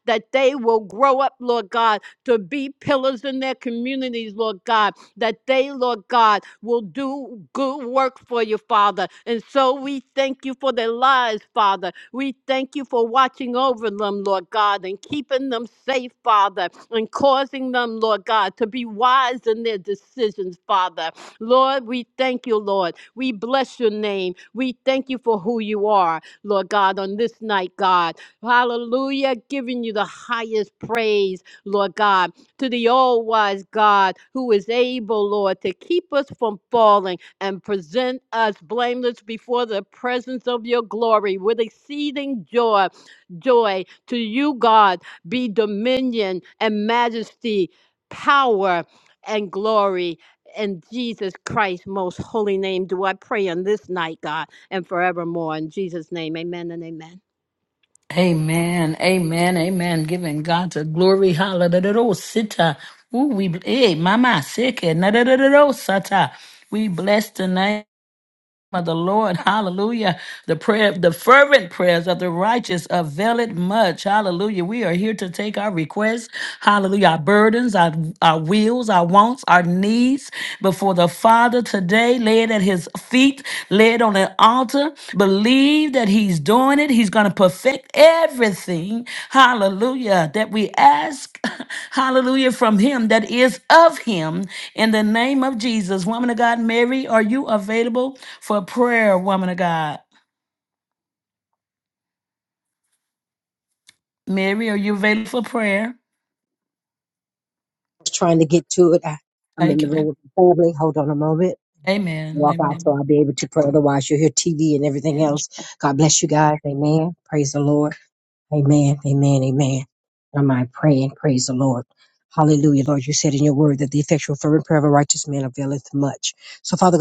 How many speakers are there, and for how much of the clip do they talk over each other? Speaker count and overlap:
three, about 1%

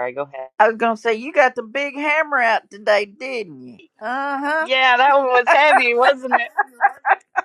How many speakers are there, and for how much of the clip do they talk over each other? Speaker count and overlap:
two, about 1%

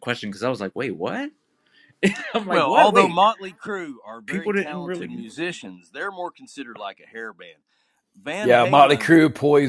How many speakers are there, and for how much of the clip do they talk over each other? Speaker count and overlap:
three, about 24%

